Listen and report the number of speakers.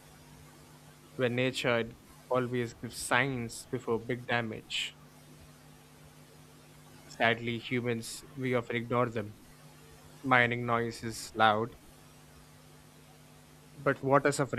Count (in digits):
1